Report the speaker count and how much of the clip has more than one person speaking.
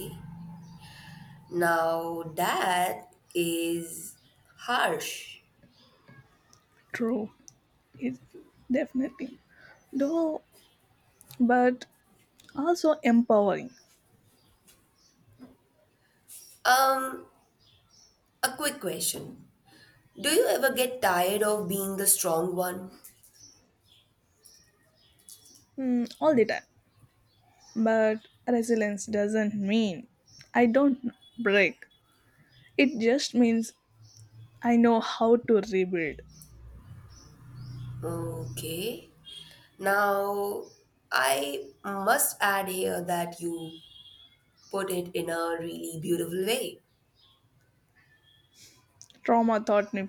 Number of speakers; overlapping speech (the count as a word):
two, no overlap